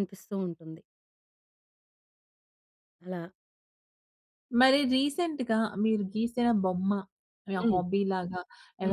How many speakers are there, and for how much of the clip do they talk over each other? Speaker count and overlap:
two, about 4%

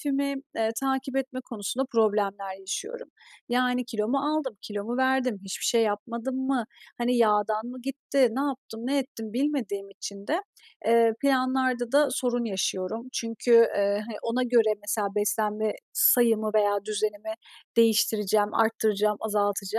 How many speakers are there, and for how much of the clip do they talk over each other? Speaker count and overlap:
one, no overlap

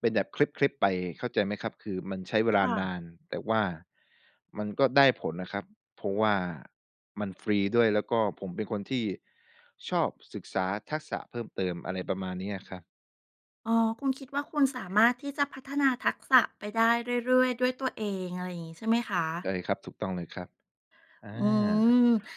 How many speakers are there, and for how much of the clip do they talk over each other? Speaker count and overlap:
two, about 1%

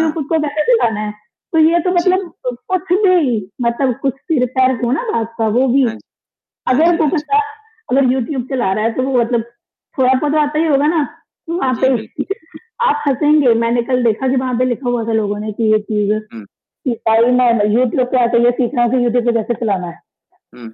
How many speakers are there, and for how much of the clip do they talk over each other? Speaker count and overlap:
two, about 7%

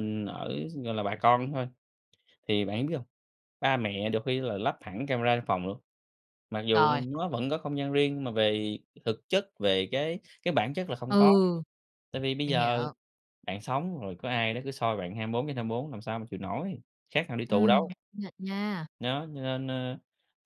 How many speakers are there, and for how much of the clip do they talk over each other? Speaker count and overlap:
two, about 7%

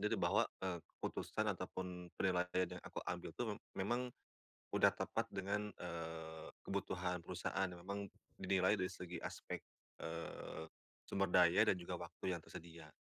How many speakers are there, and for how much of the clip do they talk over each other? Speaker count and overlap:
one, no overlap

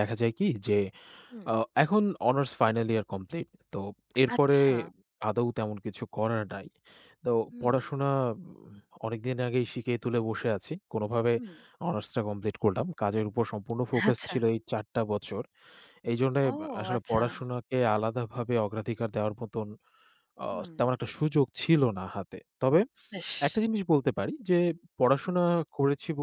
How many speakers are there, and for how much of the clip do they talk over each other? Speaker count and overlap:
two, about 9%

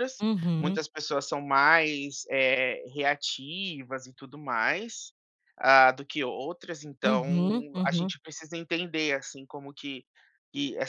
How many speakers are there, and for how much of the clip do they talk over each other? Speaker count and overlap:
two, about 7%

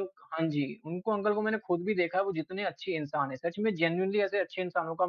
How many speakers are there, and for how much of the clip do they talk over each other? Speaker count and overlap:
one, no overlap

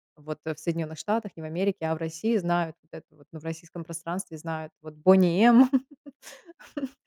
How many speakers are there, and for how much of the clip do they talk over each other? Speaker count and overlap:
one, no overlap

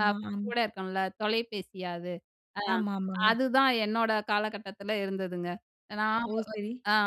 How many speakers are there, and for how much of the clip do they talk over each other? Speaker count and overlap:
two, about 2%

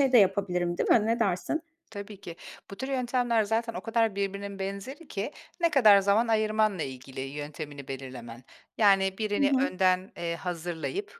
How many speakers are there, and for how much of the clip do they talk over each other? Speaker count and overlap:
two, about 4%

